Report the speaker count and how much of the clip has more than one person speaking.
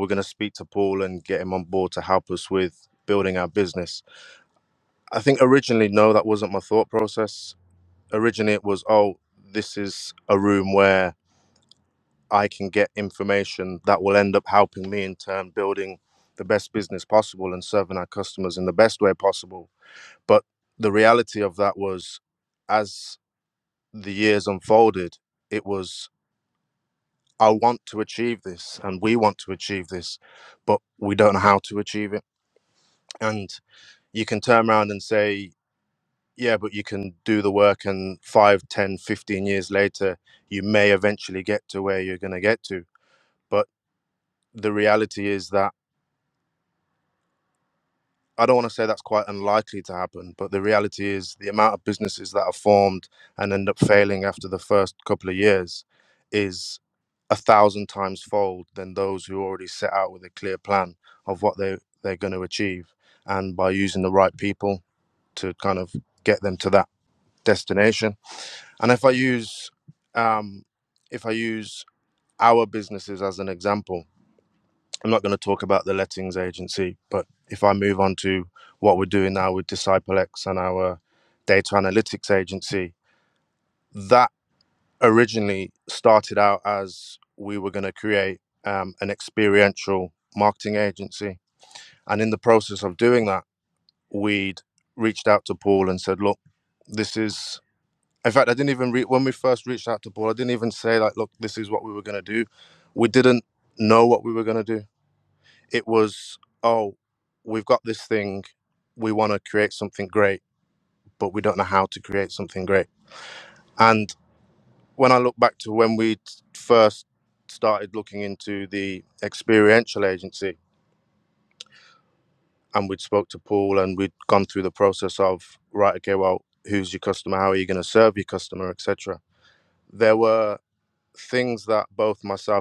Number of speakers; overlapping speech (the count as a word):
one, no overlap